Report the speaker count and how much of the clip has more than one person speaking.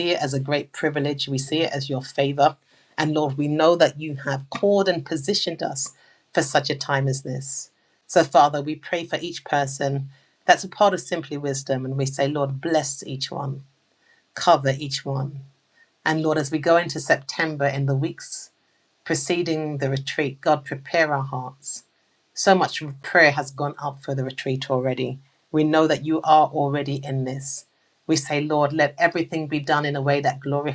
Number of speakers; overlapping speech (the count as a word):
one, no overlap